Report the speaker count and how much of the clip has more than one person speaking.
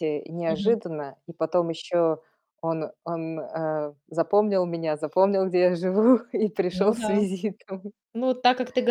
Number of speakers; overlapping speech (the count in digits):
2, about 9%